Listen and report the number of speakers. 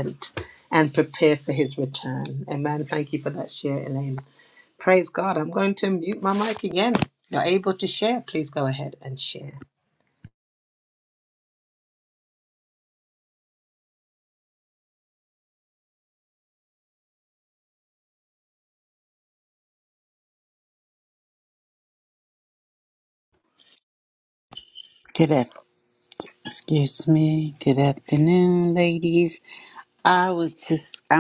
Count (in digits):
2